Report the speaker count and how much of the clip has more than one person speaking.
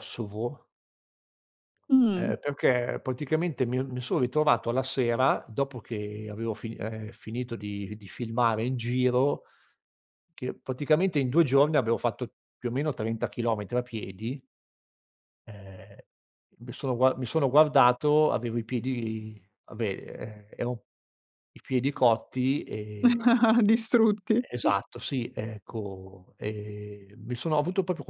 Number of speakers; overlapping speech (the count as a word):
two, about 1%